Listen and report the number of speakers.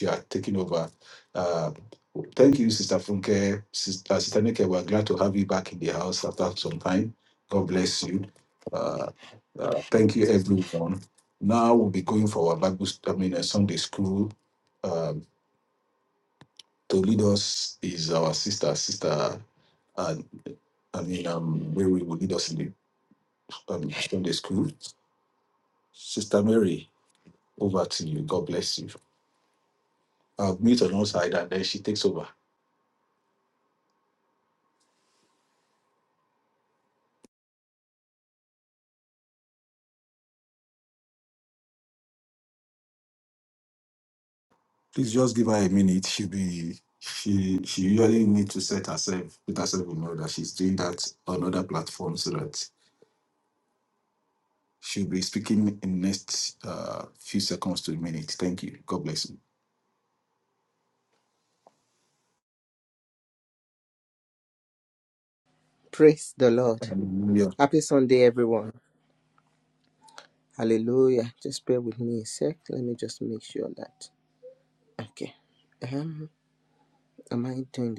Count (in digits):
2